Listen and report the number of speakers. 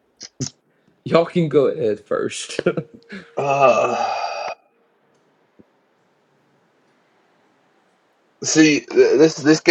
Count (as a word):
two